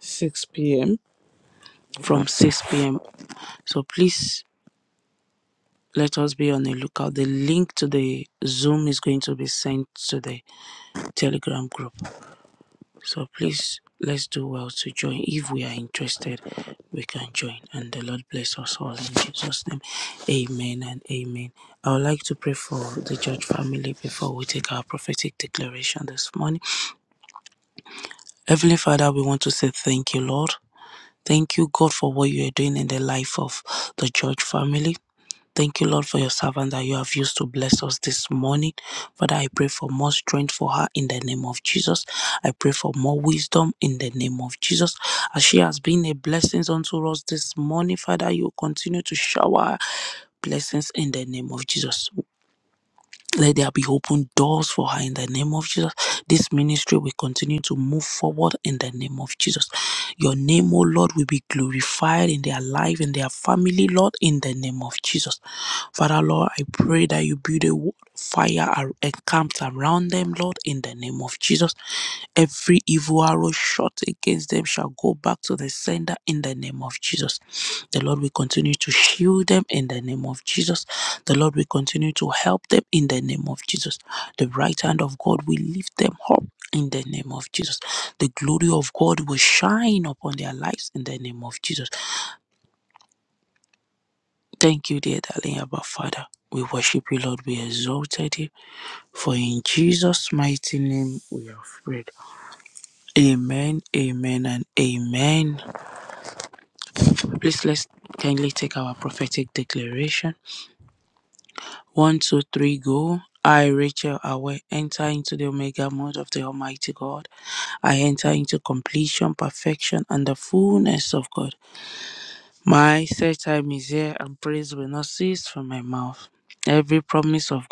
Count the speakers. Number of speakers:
one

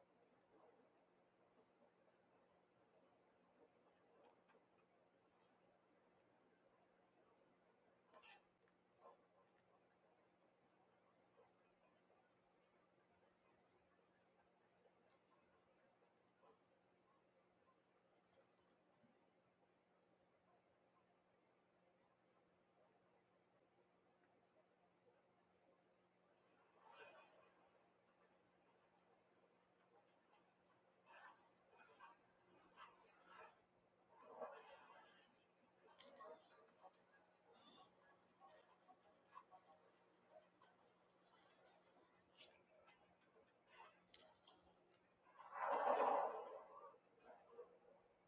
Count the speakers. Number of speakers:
zero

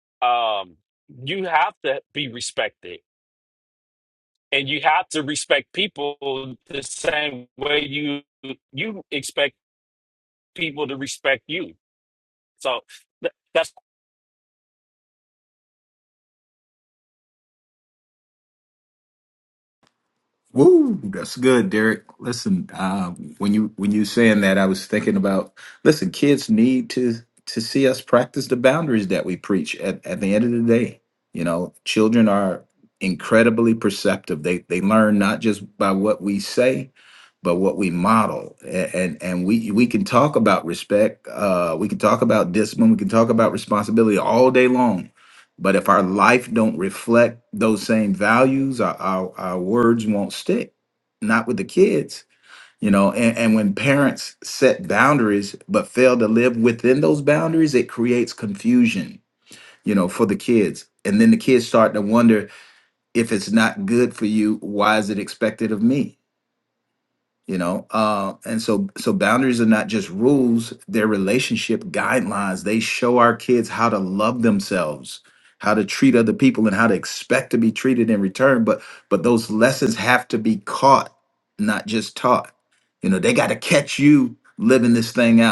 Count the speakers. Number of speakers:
two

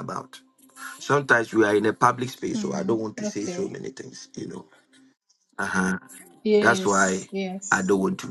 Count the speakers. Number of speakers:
two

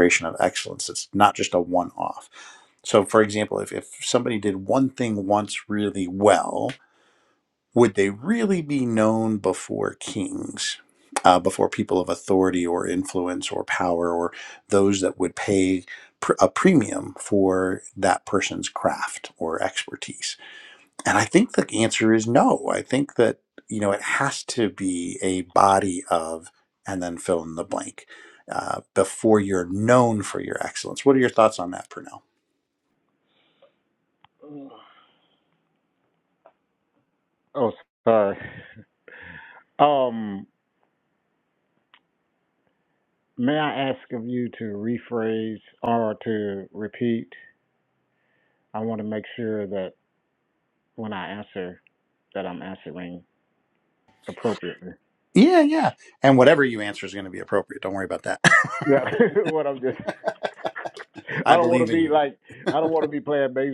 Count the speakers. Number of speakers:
two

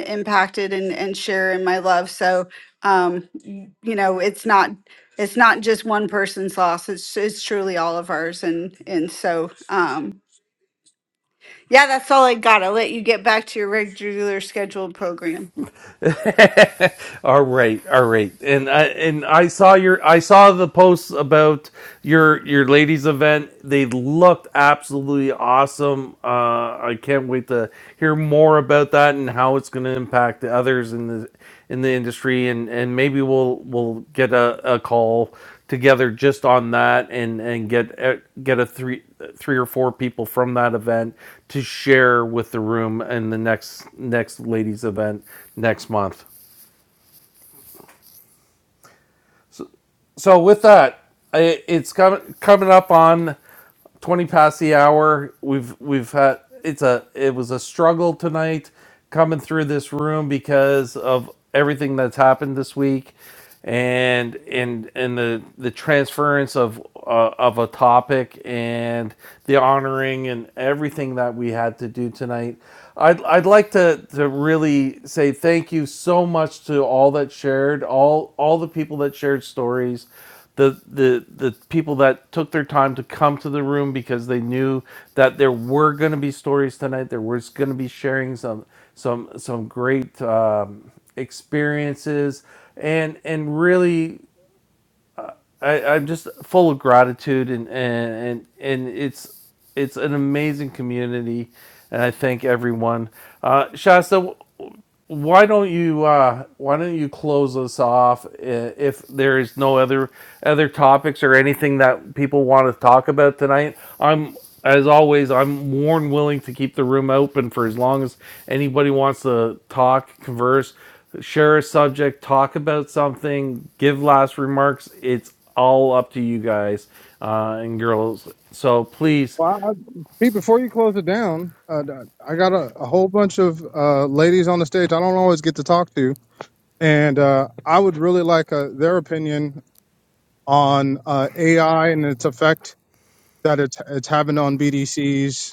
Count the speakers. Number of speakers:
three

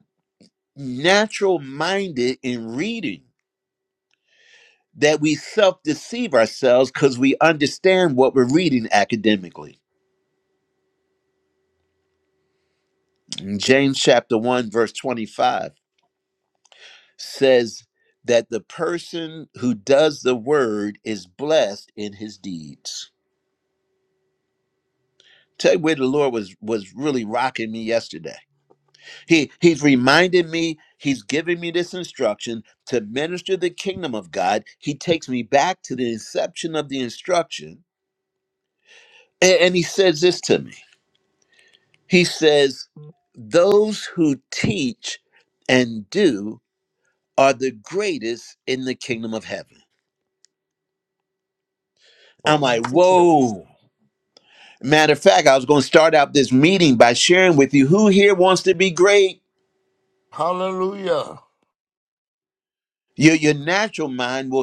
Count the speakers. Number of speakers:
two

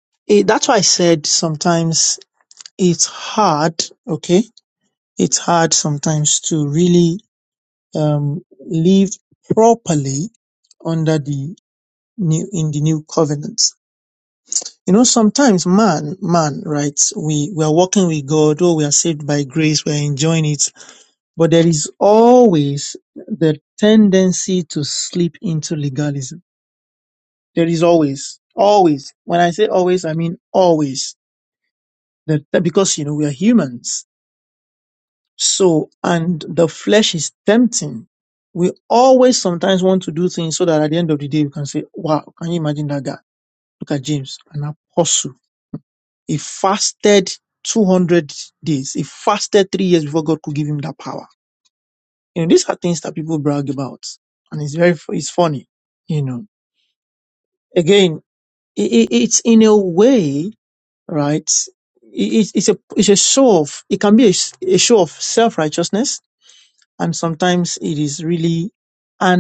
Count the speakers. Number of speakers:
one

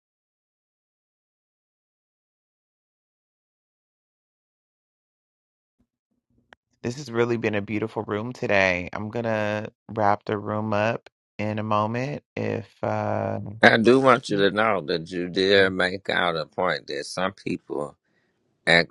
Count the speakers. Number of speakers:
two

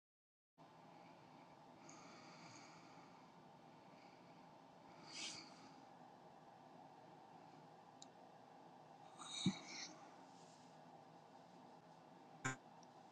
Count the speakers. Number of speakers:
zero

